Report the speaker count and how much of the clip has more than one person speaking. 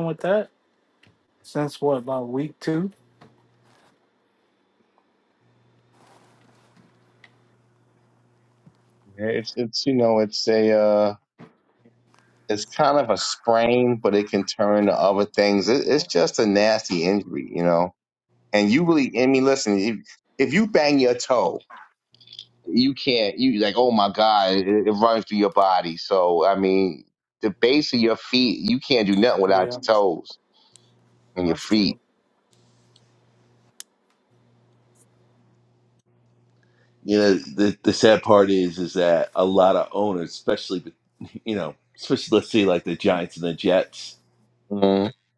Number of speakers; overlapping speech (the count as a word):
three, about 2%